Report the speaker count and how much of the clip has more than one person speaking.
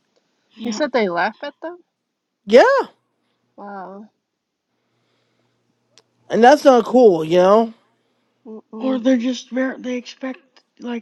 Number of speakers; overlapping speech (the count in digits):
3, about 4%